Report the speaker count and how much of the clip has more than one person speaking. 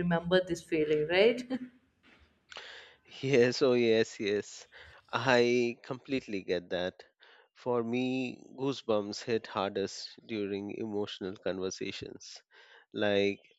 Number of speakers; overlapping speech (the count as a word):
two, no overlap